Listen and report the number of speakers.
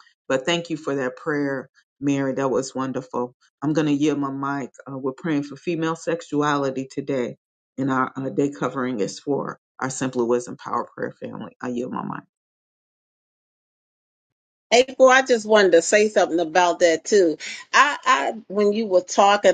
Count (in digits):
2